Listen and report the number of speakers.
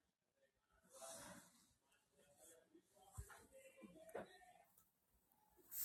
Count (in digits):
0